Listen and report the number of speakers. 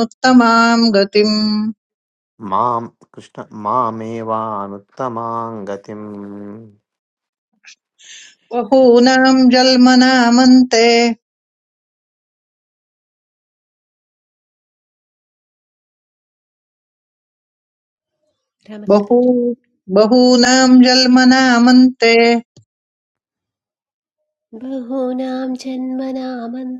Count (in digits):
3